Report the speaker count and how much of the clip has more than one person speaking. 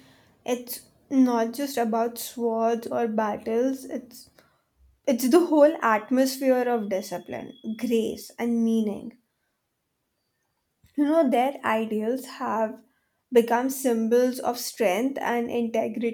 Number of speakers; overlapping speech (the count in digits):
1, no overlap